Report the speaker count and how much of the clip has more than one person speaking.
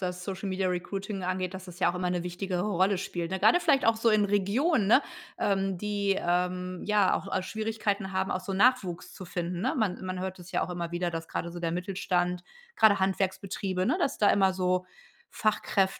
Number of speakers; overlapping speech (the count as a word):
one, no overlap